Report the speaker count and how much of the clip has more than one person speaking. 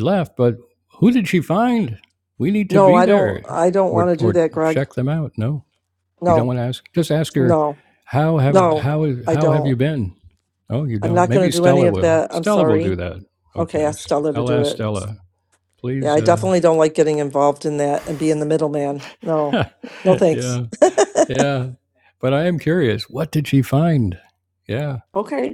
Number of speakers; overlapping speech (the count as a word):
two, about 25%